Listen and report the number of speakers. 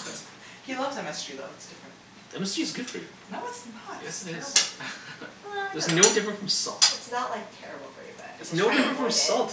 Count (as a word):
three